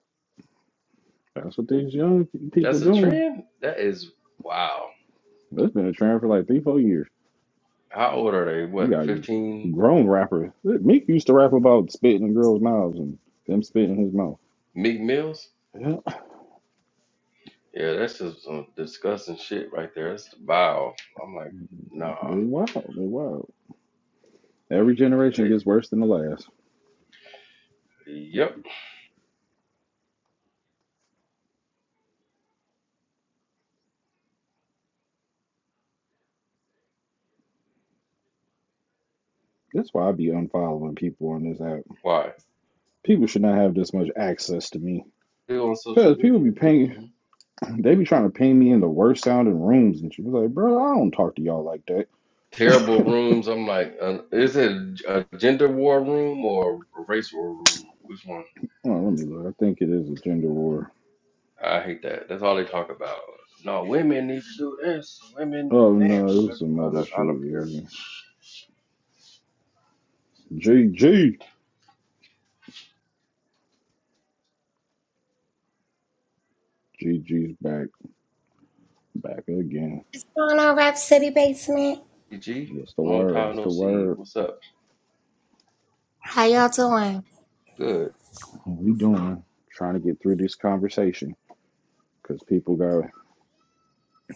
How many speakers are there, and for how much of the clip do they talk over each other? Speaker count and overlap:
3, about 6%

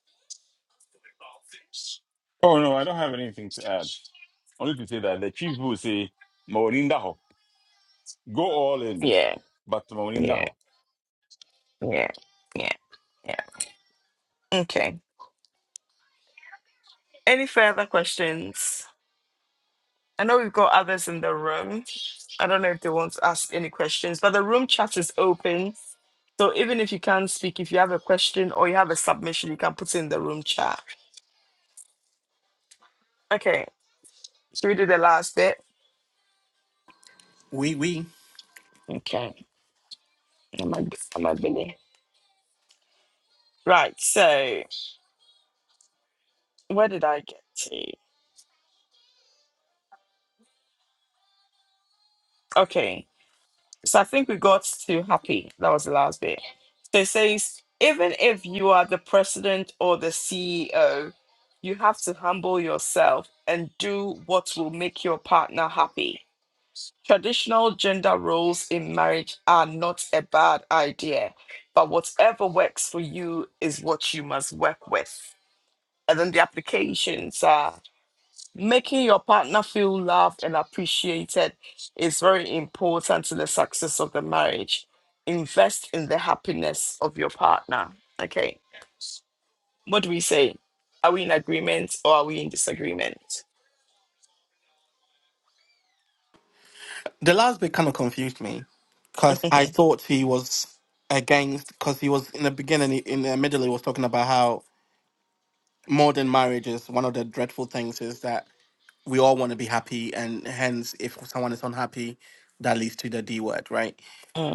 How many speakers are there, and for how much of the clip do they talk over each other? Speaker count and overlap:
3, under 1%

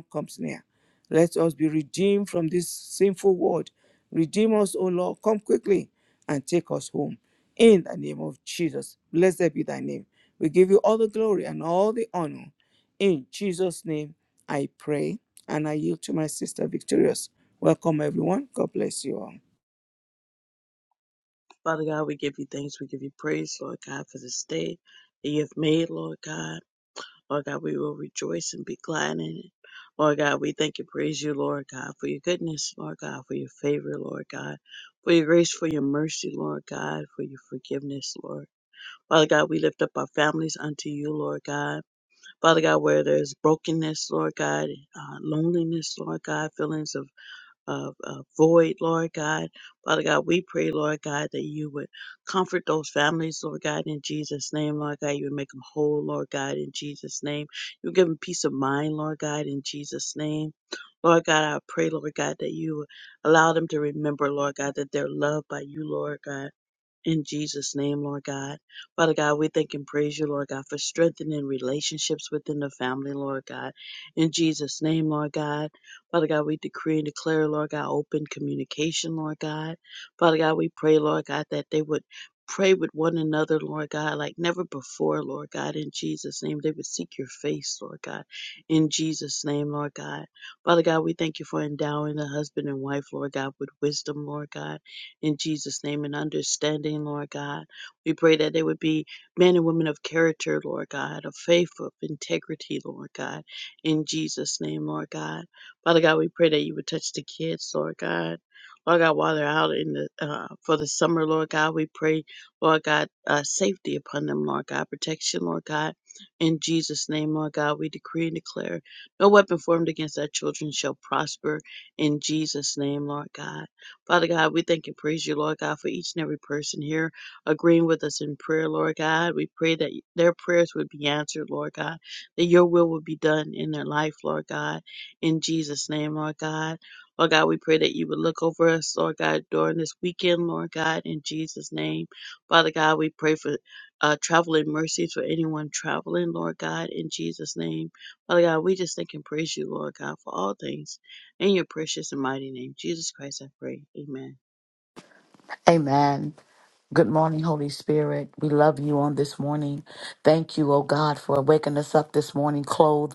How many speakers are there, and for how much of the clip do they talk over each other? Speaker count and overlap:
3, no overlap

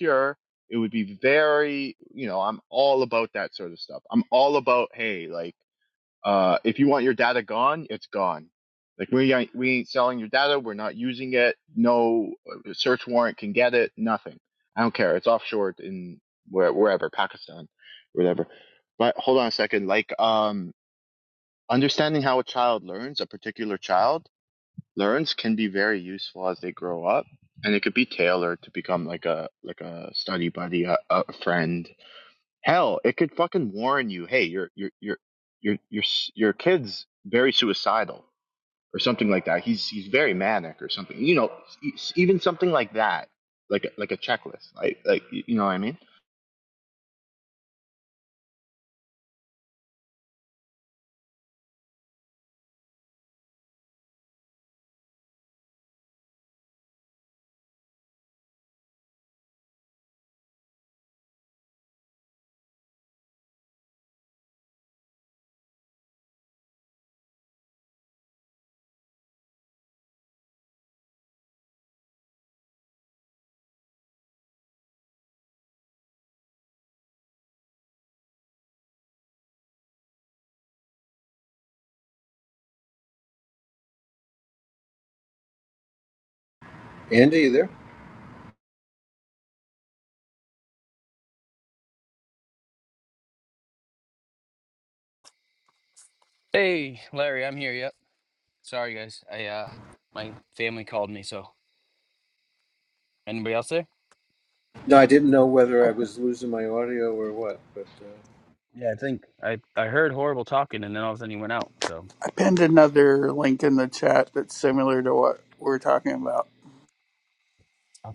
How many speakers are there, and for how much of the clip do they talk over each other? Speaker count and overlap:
4, under 1%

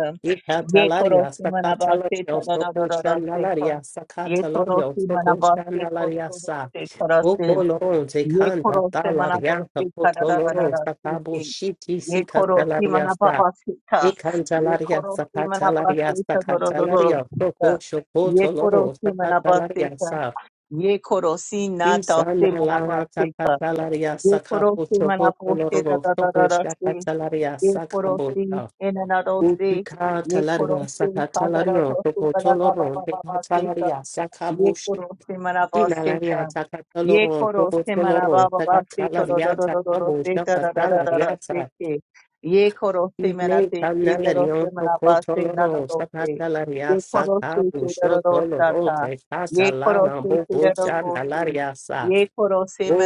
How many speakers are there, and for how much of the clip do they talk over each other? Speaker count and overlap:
2, about 72%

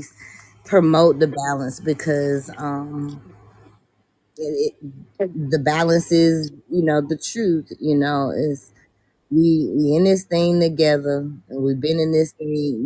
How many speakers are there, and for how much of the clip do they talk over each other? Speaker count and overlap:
1, no overlap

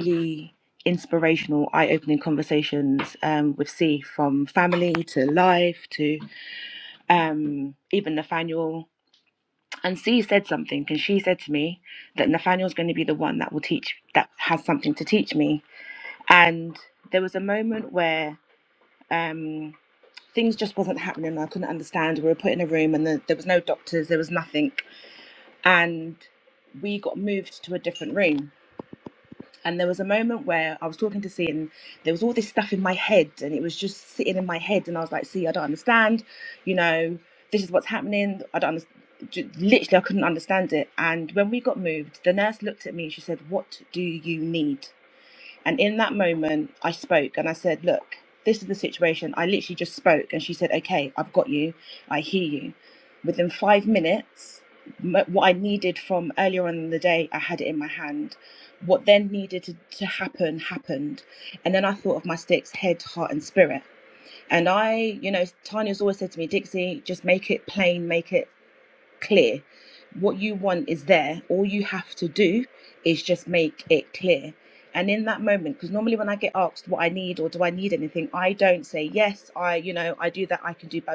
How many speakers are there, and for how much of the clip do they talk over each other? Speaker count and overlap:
1, no overlap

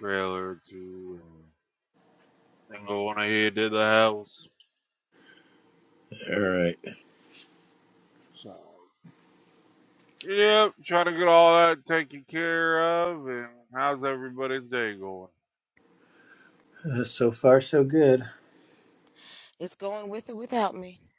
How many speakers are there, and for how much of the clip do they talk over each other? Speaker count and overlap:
3, no overlap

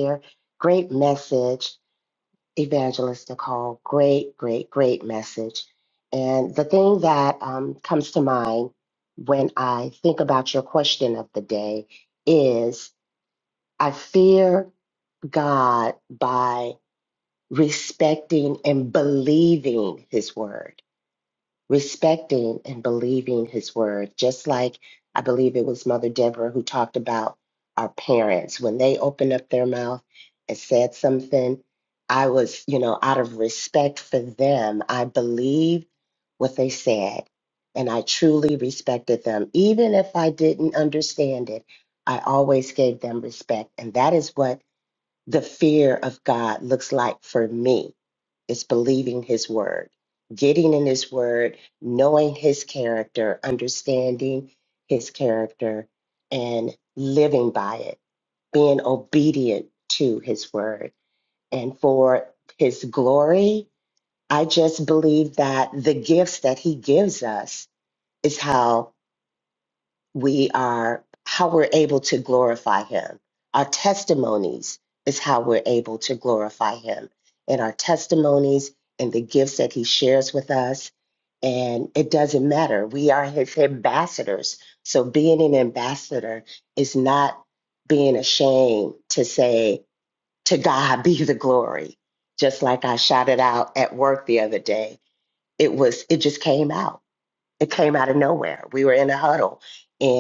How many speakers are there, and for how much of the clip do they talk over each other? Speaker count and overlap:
1, no overlap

